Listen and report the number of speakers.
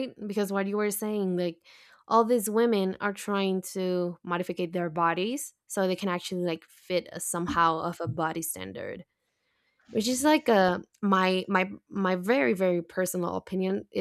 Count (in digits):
1